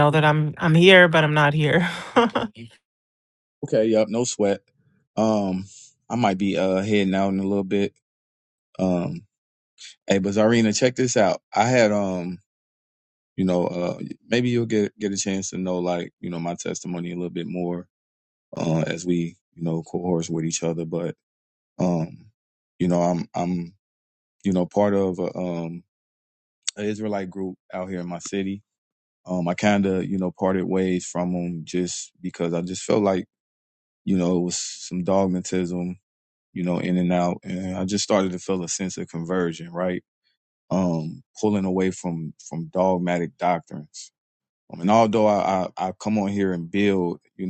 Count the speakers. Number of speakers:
2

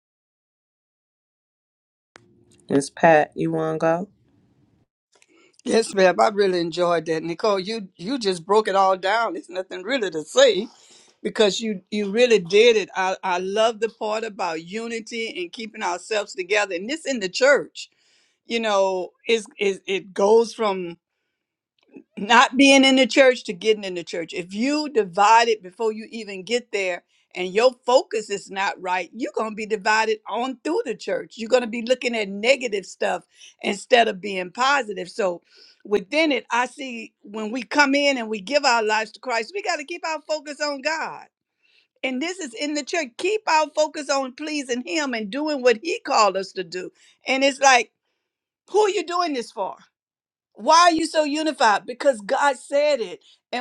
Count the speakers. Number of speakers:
2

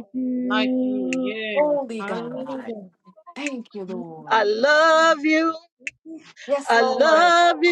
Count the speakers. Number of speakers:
3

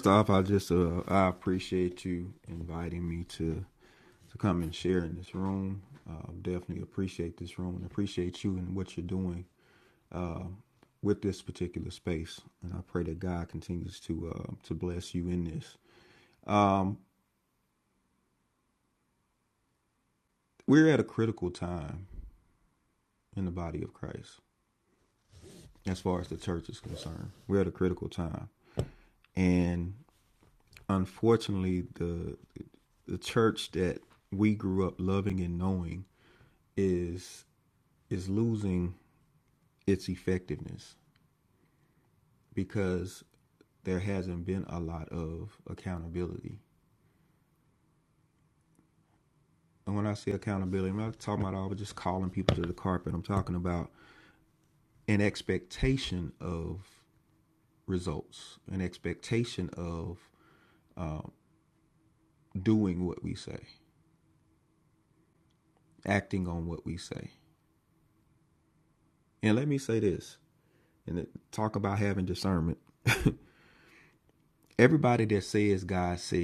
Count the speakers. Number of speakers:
1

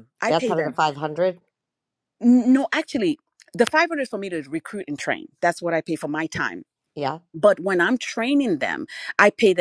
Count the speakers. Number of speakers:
2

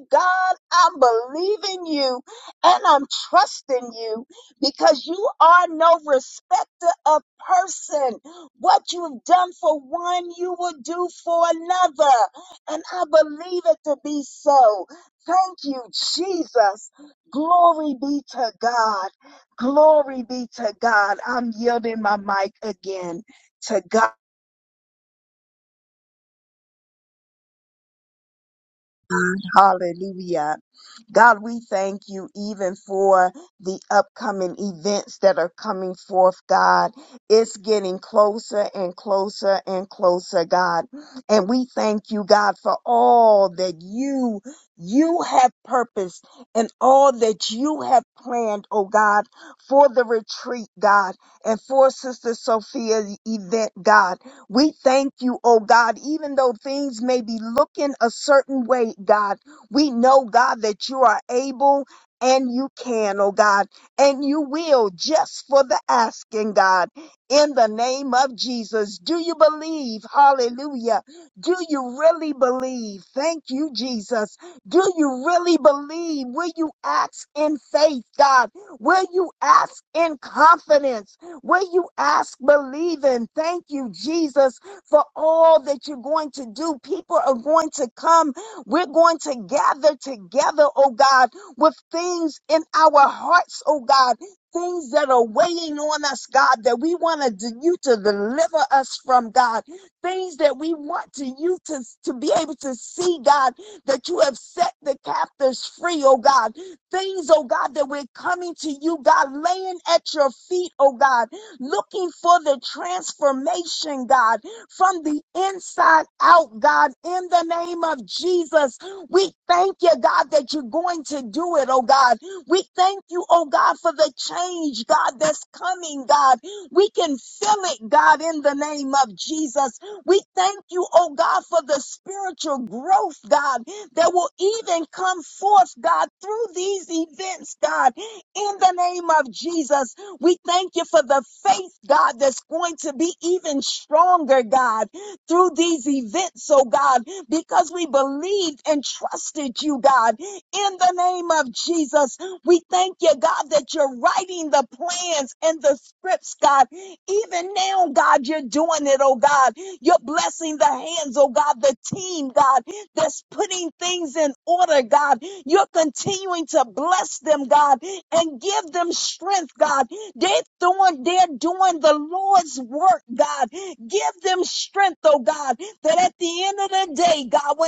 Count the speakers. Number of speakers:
1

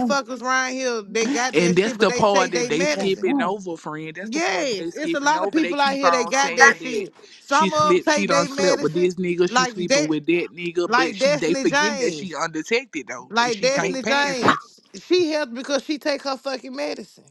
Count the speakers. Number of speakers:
2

